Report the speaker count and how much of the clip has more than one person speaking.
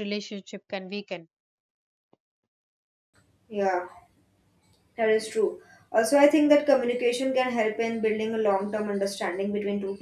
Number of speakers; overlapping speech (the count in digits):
2, no overlap